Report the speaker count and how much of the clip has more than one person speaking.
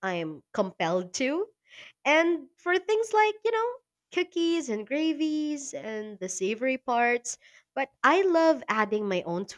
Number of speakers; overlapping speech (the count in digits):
1, no overlap